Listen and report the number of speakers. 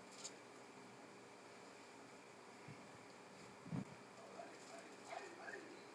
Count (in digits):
0